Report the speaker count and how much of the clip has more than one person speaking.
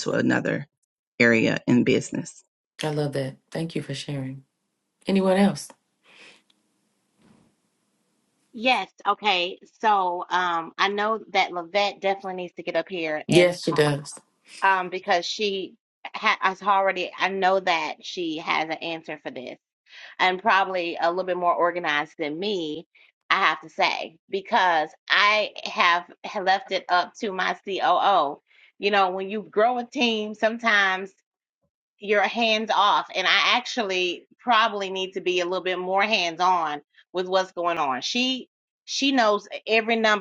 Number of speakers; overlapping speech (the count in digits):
3, about 1%